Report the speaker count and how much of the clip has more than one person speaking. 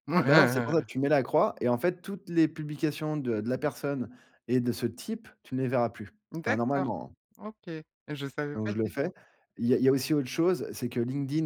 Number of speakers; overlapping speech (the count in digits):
2, about 9%